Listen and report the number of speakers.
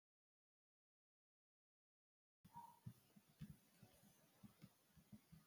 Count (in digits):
0